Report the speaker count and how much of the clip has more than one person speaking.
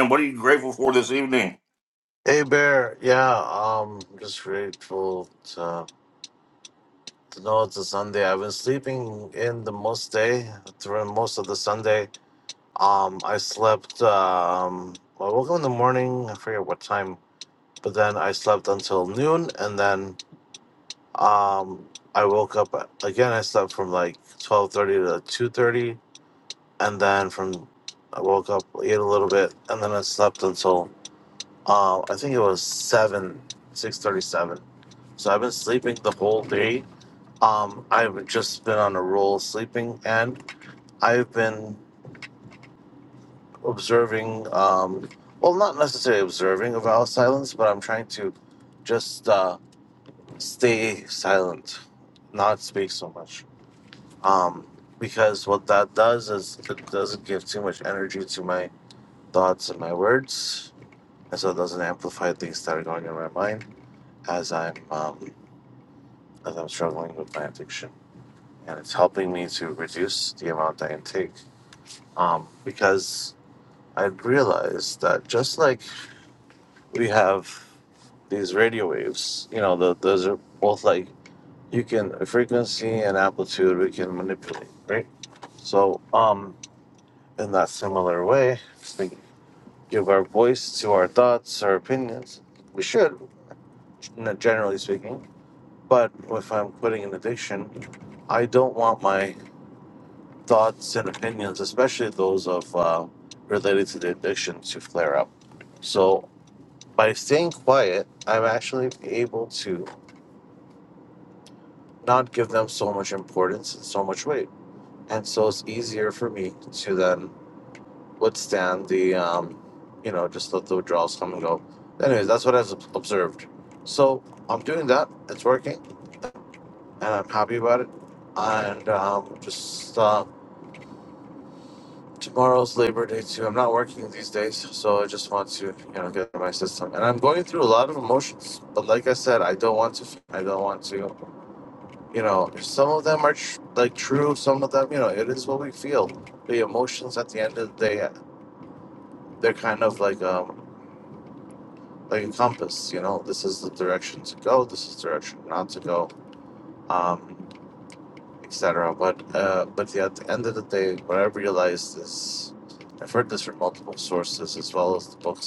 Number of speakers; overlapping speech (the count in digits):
2, no overlap